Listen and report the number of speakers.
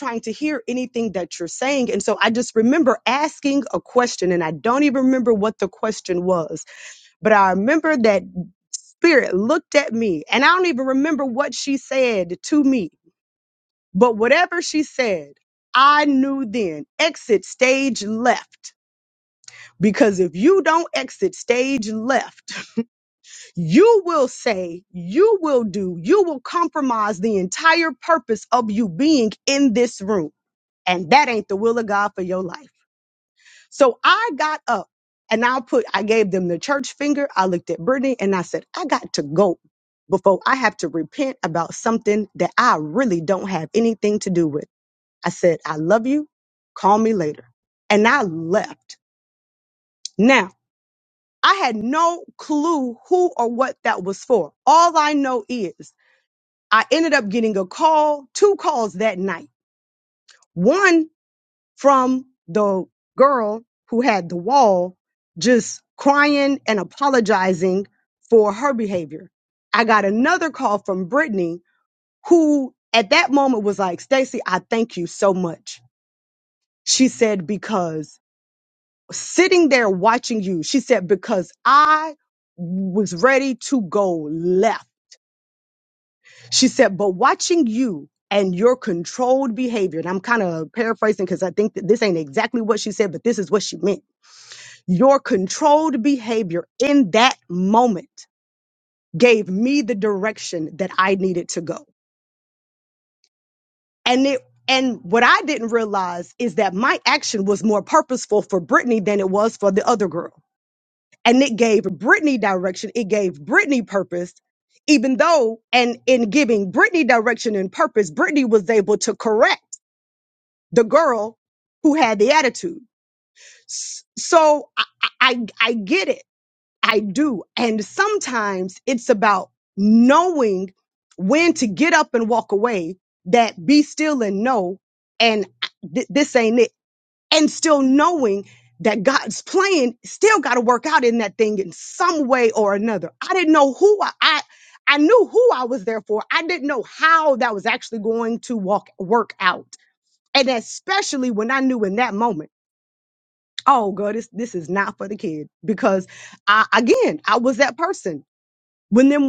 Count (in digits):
1